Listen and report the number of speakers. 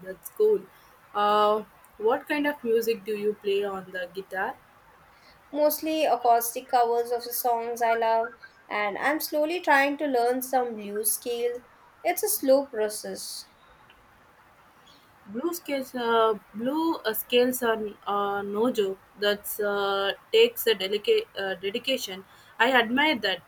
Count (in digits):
2